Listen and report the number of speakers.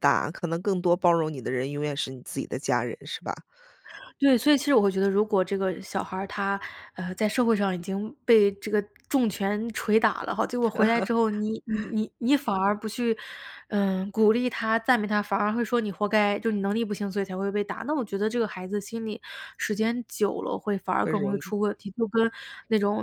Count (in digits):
2